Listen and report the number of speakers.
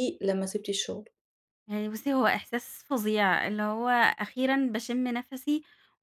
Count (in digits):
2